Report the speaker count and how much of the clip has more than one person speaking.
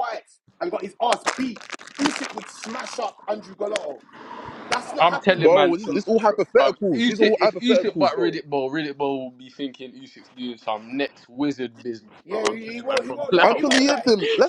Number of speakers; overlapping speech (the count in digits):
3, about 30%